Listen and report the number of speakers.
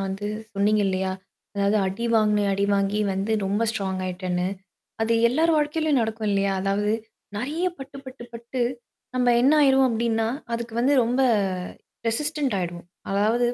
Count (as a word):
one